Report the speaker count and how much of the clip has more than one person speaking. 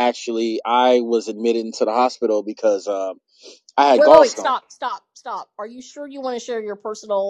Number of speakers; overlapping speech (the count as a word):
two, about 8%